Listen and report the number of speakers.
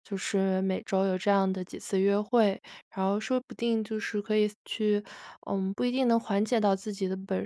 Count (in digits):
1